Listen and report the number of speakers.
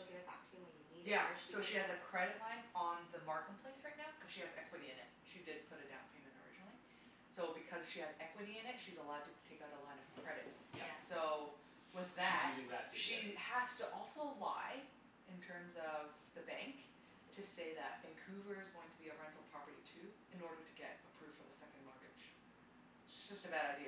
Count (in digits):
3